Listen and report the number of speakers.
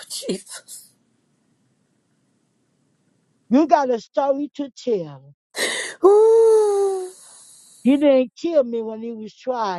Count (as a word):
two